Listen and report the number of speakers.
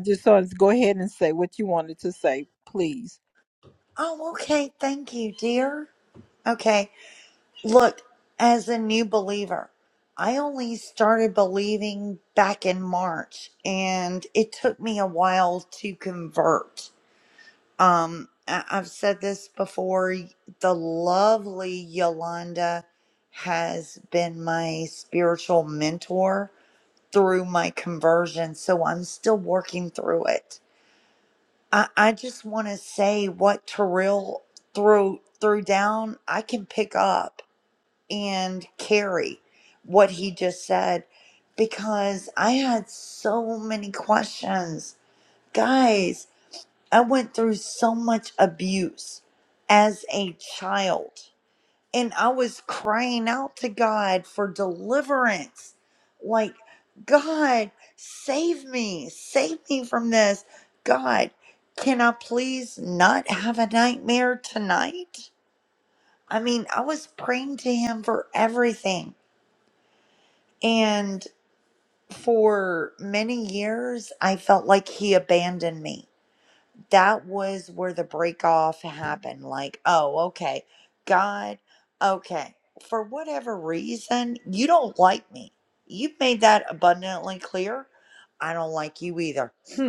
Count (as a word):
two